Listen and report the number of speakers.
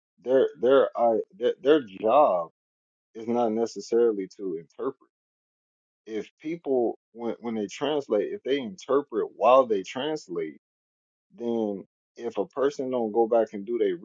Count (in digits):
1